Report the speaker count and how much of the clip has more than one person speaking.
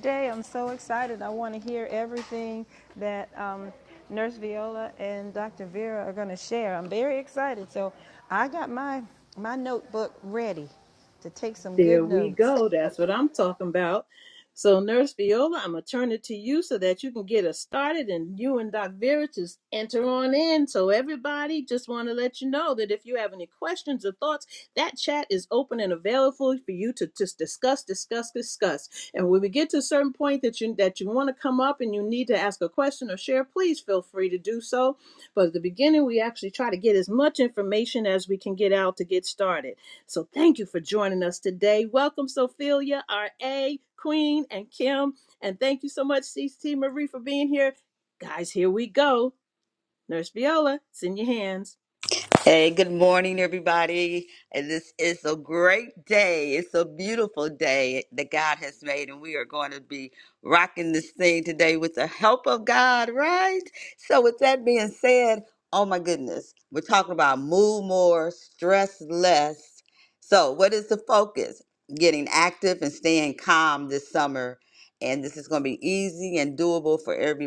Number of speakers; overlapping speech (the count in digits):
3, about 1%